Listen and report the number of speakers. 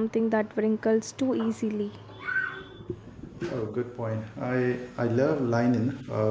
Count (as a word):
two